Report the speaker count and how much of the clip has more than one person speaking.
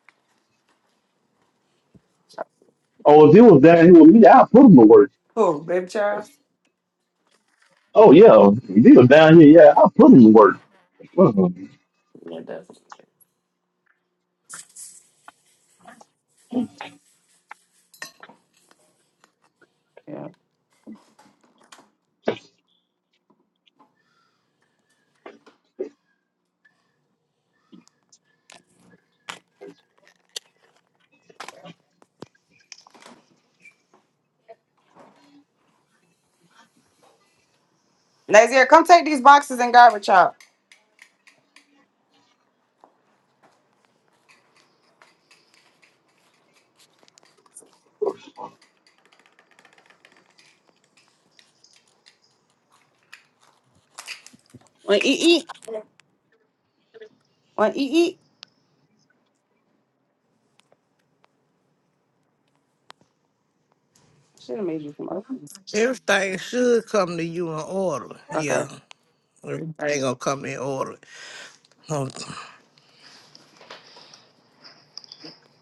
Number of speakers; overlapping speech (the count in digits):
3, under 1%